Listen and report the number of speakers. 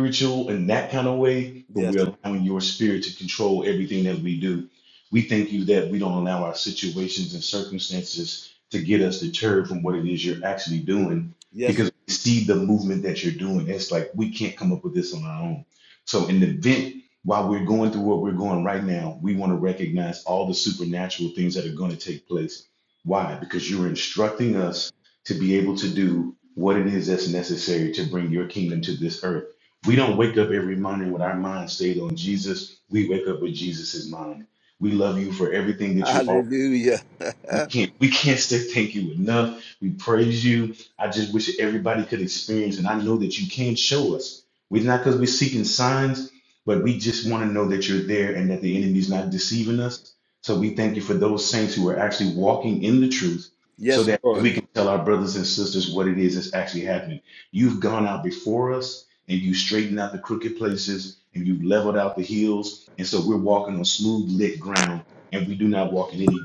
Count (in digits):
2